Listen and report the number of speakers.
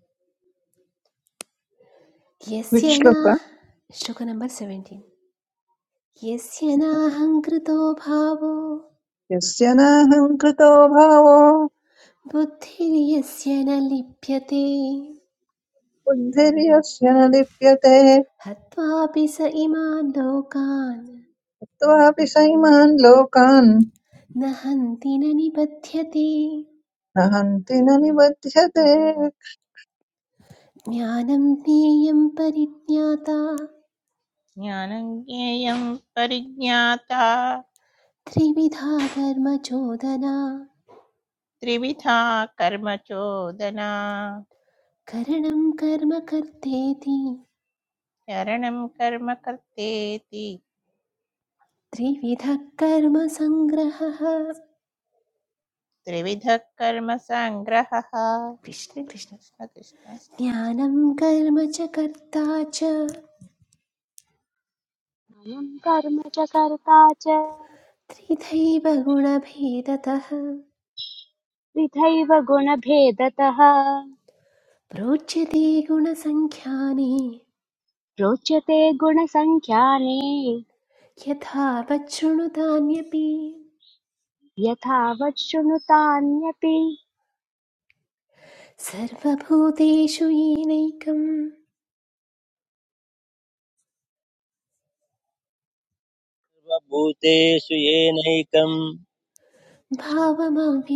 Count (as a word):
five